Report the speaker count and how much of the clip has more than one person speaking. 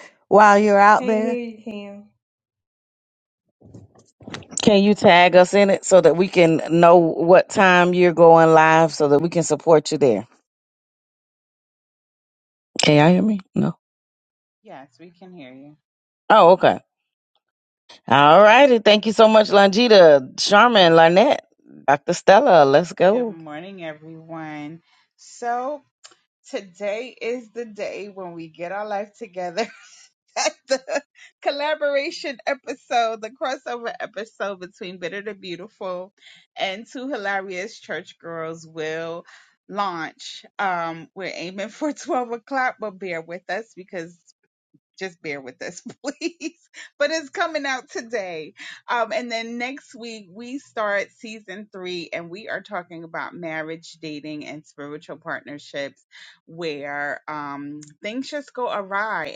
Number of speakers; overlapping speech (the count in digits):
3, about 1%